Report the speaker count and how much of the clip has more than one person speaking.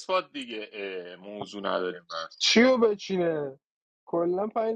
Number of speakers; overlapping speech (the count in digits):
2, no overlap